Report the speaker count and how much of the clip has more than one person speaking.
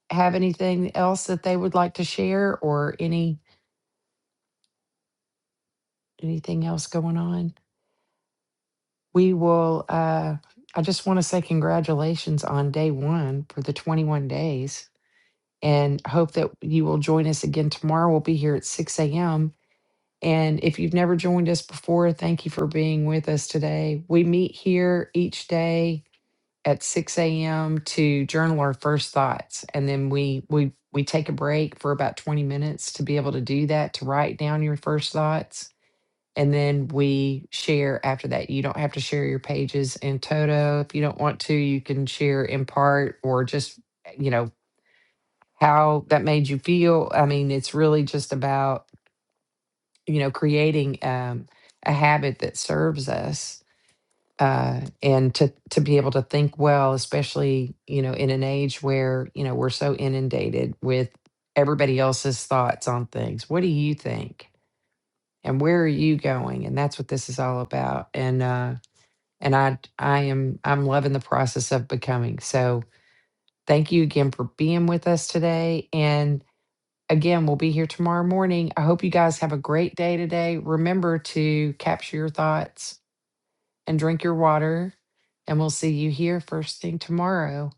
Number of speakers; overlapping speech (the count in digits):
1, no overlap